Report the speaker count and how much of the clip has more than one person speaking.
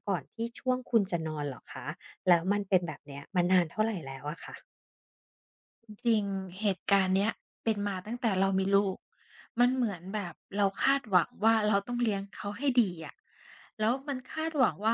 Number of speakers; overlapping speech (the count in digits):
2, no overlap